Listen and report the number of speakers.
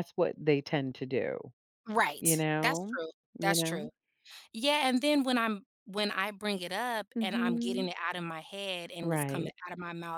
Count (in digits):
2